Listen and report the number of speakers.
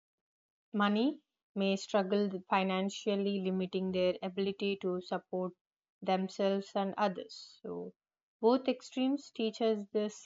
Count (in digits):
1